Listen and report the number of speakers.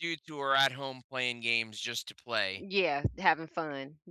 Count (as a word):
two